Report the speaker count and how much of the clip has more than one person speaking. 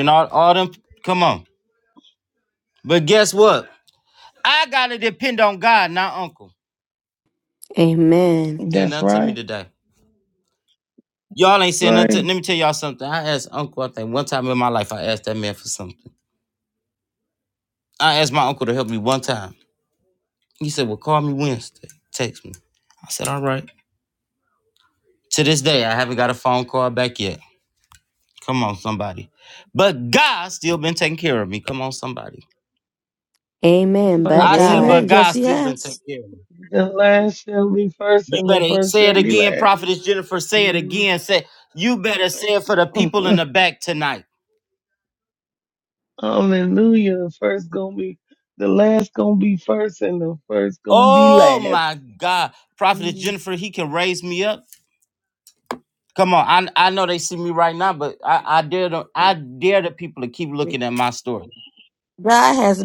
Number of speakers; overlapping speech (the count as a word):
four, about 9%